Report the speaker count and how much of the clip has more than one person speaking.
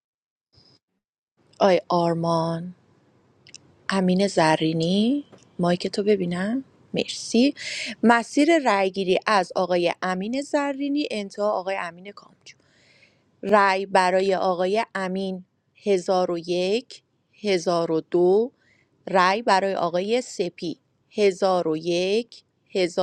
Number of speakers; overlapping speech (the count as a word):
one, no overlap